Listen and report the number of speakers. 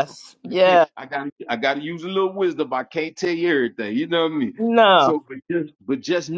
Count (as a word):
two